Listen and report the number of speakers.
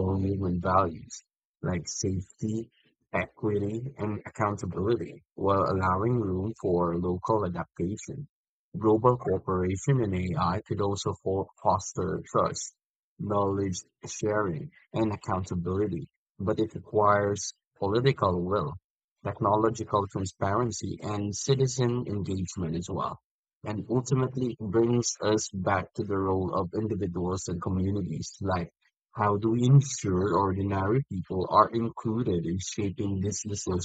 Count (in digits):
1